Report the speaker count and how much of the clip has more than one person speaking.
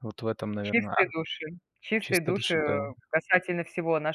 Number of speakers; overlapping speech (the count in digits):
2, about 28%